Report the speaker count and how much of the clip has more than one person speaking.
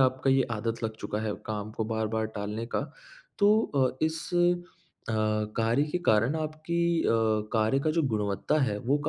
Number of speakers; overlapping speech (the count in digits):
1, no overlap